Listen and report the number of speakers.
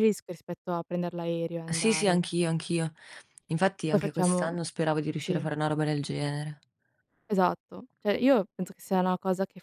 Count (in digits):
2